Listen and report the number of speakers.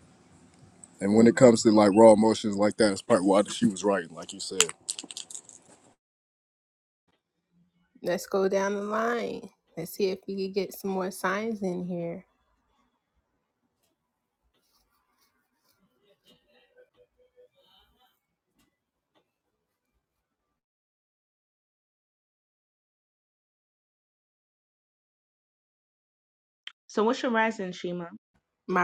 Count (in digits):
3